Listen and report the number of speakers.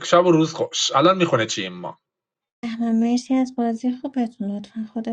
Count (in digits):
2